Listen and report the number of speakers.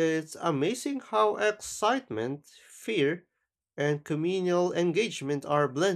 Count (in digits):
1